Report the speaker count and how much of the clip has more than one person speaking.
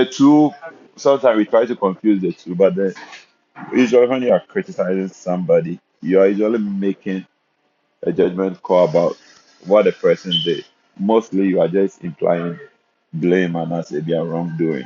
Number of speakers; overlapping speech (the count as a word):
one, no overlap